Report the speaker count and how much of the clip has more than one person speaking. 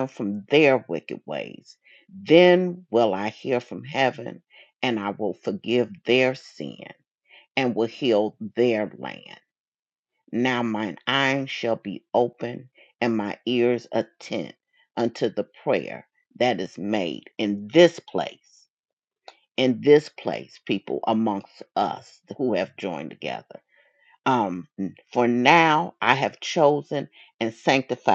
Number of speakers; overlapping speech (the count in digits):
1, no overlap